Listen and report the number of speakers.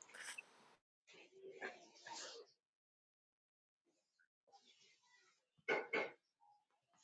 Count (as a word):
zero